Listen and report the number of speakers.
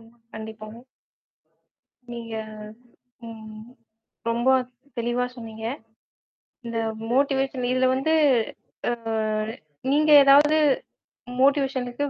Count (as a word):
one